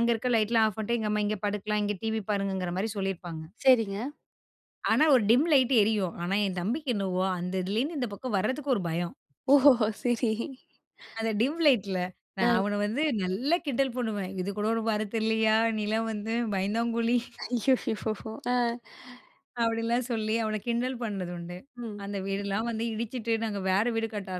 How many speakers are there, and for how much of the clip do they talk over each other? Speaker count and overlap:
2, about 1%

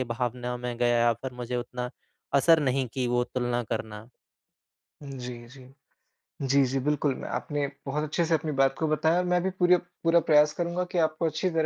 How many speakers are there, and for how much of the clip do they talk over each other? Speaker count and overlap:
2, no overlap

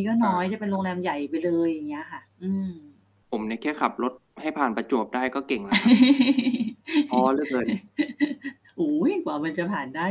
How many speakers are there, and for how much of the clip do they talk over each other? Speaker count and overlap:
2, about 2%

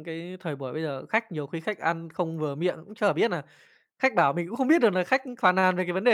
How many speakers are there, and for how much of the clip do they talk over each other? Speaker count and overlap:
1, no overlap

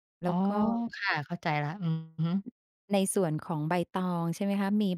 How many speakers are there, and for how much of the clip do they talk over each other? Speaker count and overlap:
2, about 3%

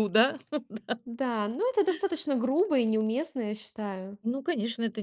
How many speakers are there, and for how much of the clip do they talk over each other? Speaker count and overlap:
2, no overlap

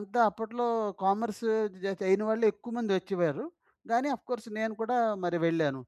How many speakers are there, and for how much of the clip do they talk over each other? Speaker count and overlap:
1, no overlap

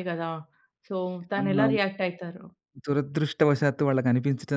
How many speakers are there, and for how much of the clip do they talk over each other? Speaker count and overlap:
2, about 3%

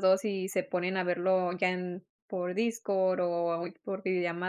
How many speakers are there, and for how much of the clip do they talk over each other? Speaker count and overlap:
1, no overlap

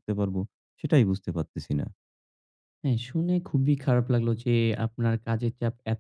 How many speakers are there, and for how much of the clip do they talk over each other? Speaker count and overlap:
2, no overlap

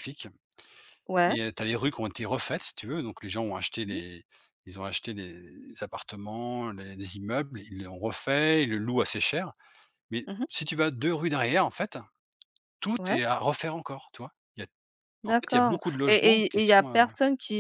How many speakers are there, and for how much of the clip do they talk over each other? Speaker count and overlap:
2, about 14%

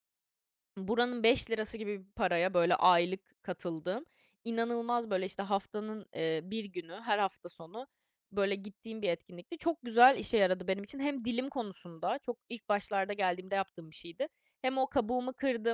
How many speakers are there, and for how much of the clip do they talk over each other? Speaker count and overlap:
1, no overlap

